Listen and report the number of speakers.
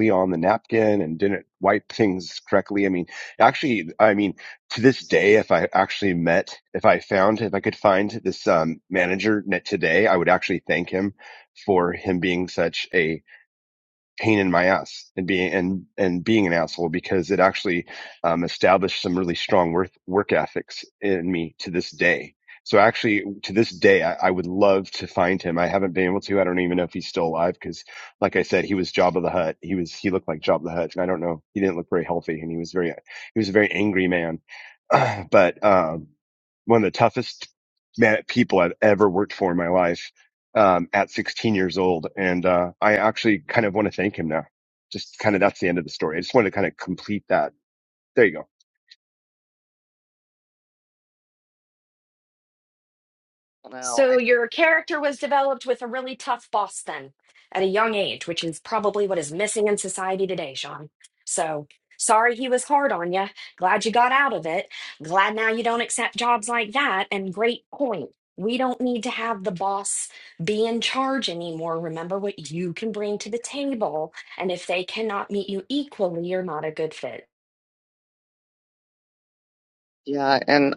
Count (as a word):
three